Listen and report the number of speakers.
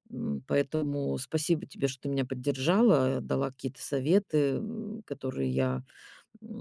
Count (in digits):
1